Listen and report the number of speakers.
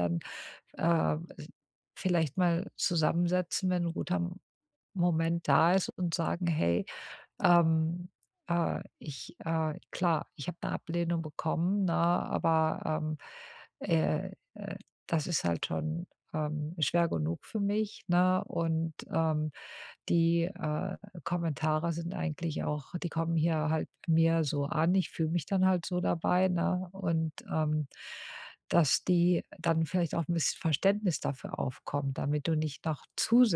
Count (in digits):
1